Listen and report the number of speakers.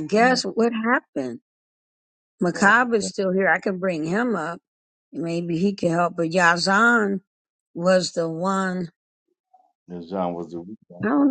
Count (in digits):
2